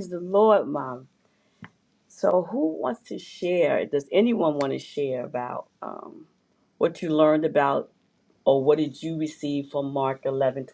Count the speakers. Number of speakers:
1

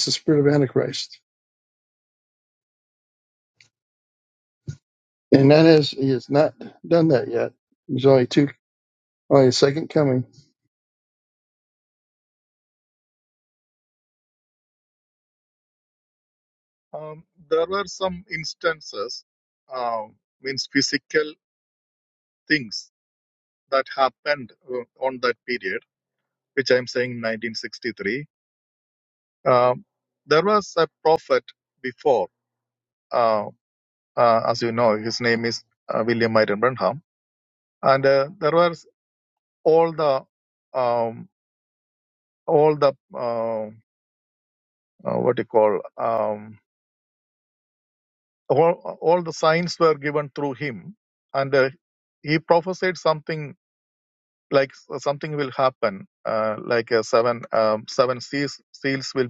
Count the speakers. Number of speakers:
2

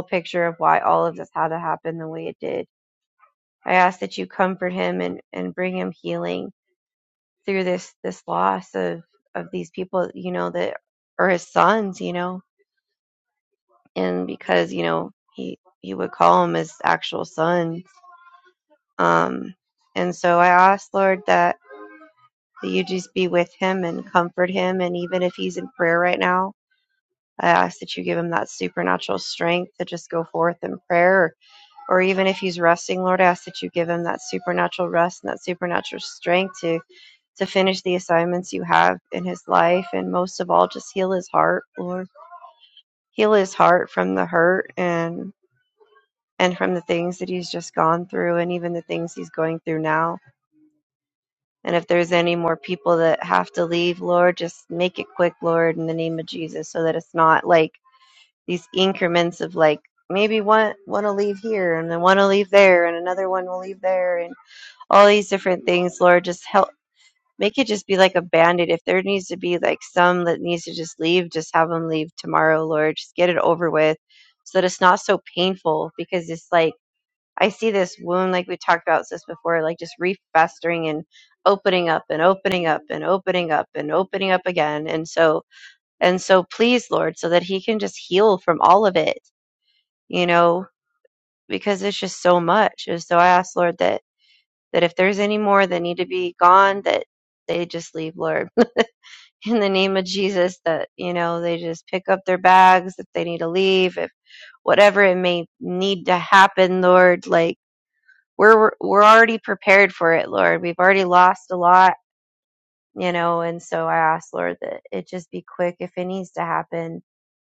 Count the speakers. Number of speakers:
1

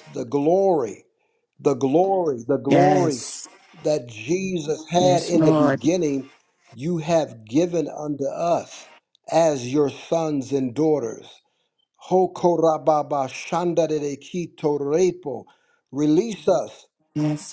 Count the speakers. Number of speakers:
2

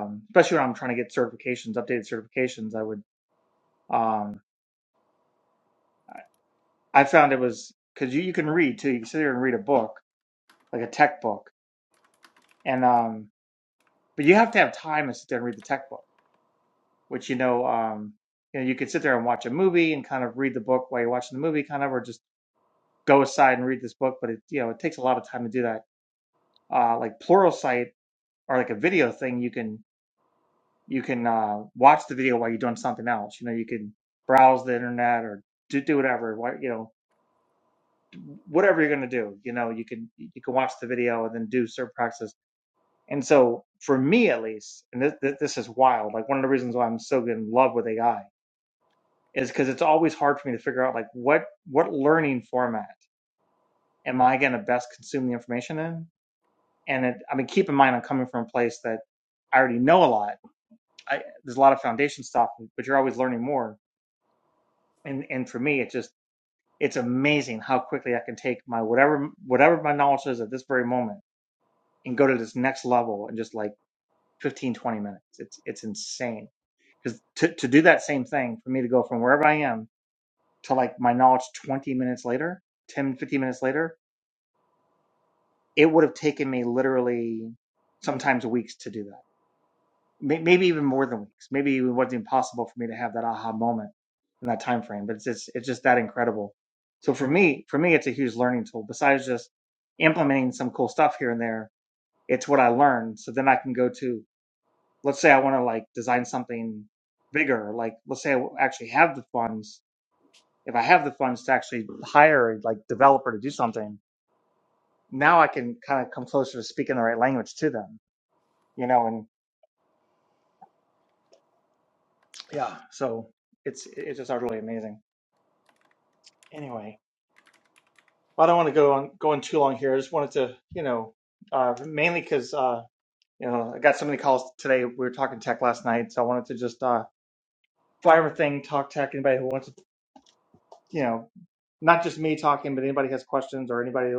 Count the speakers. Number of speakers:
1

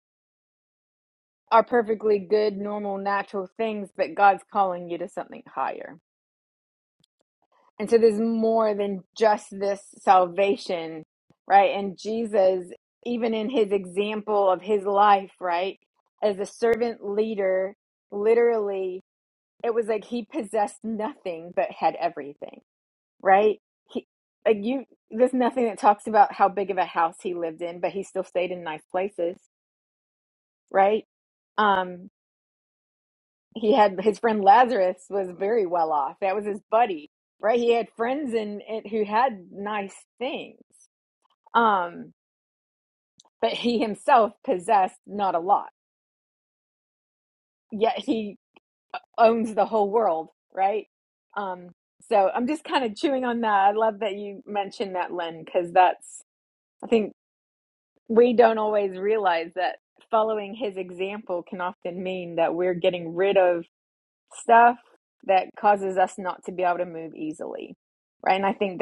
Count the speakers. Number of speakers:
1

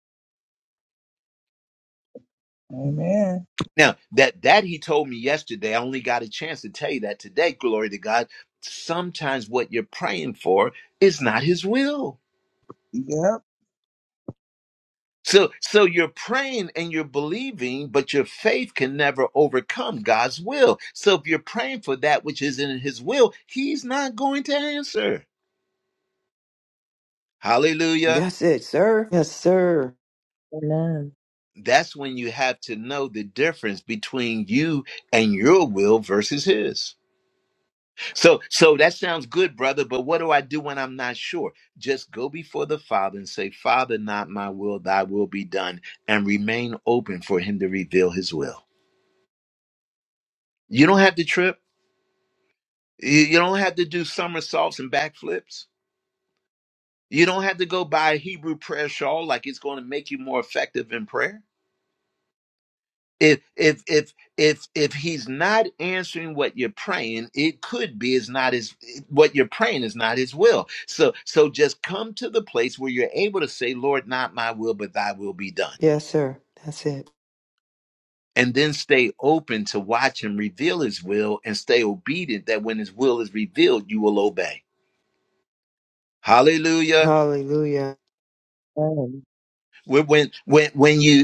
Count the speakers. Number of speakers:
4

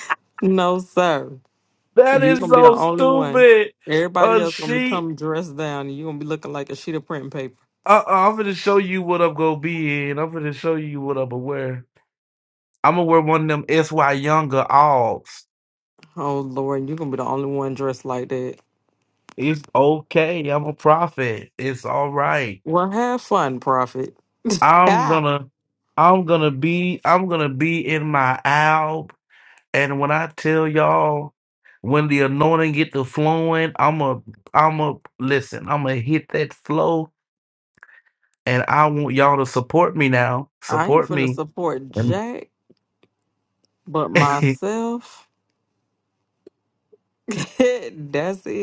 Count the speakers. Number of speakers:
2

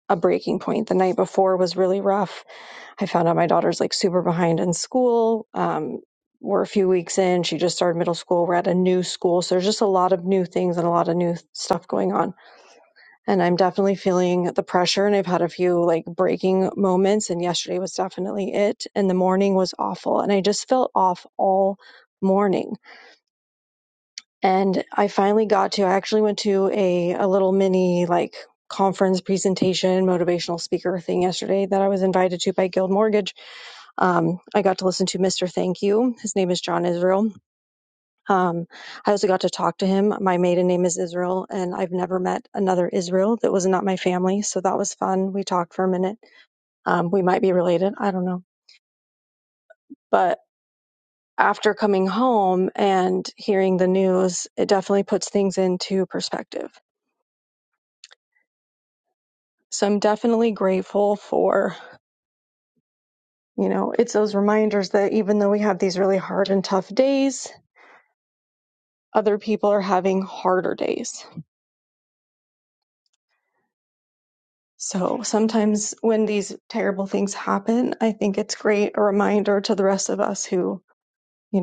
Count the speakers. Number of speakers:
1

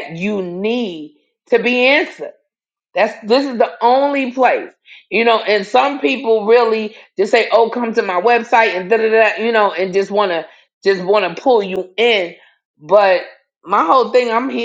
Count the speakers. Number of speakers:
1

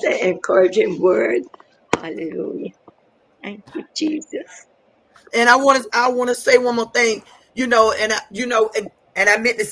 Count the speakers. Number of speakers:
2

